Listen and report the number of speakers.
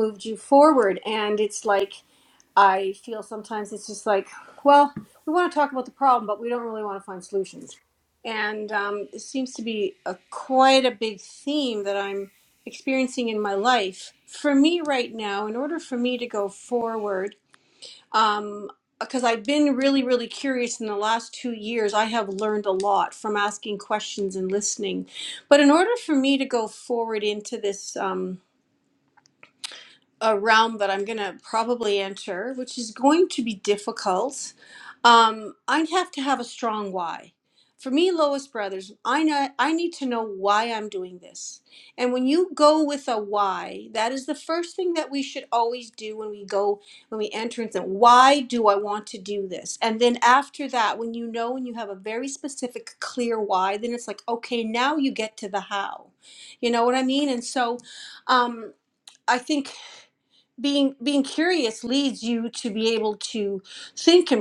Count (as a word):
one